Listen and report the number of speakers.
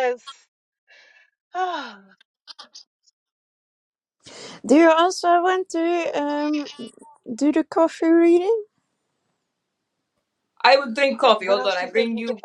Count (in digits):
3